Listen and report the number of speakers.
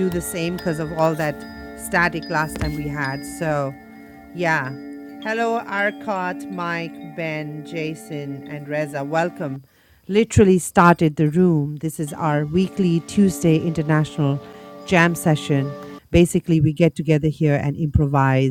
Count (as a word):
one